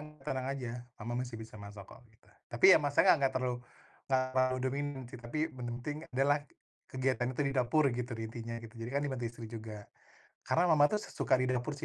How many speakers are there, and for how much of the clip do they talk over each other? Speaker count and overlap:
1, no overlap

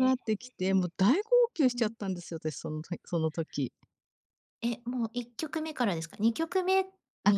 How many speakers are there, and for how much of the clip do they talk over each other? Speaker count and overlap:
2, about 9%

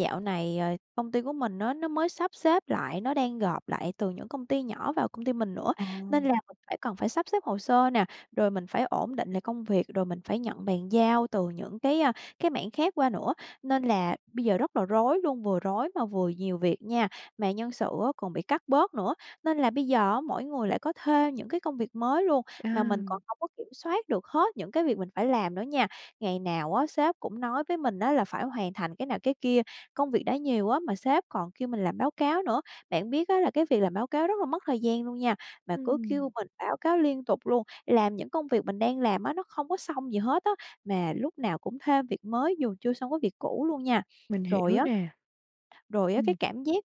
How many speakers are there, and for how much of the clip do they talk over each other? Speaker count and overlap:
2, about 4%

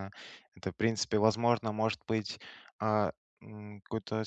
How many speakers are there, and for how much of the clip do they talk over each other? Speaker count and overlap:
1, no overlap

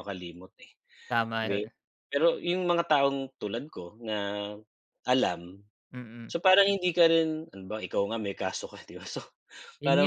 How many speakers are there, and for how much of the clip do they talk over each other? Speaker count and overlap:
2, about 5%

